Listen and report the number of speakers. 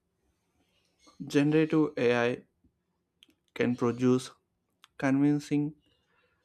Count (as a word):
one